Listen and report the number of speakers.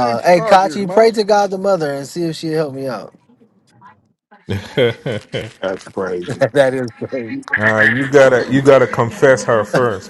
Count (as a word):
three